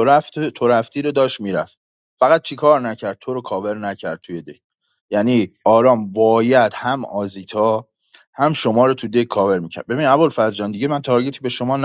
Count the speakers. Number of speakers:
1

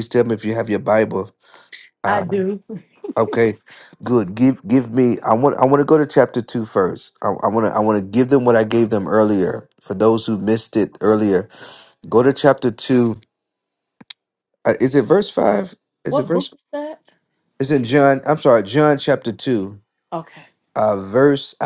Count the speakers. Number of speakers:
2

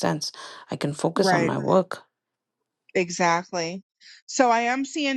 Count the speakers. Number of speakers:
2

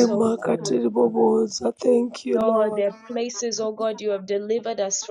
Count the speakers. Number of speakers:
2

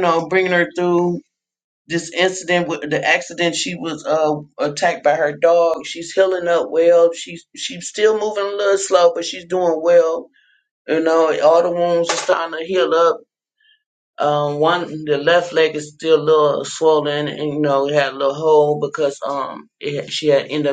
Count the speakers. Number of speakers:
1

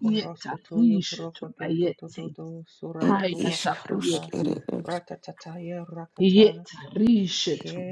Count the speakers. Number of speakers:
3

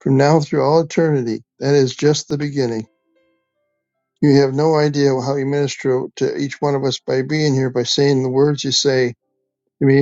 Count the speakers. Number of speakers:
1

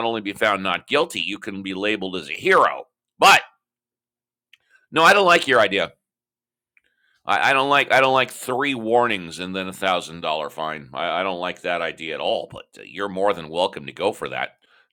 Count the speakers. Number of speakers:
1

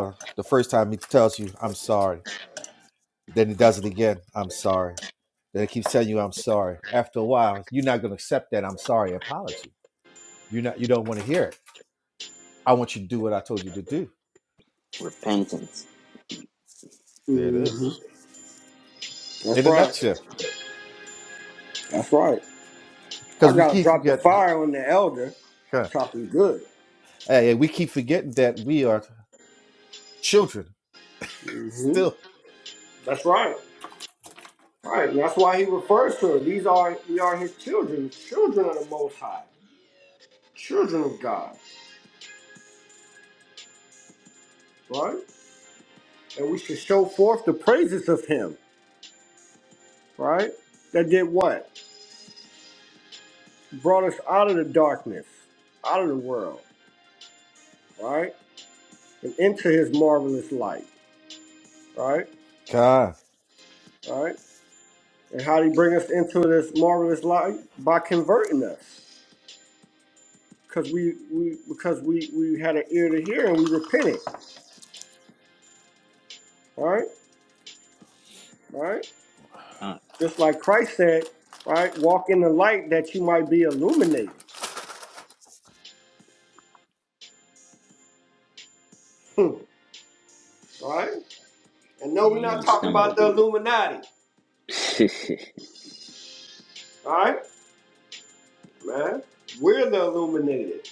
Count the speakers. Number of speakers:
3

